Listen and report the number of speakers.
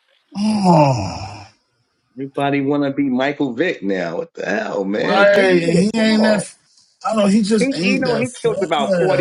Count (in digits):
2